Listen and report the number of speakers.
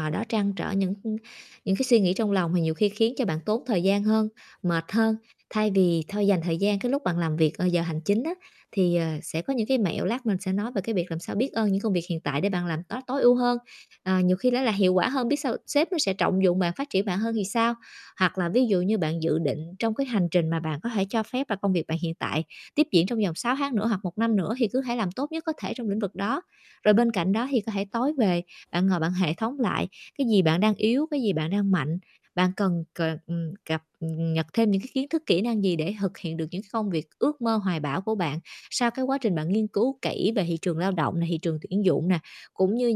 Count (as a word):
one